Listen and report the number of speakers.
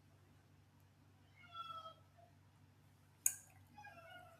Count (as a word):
zero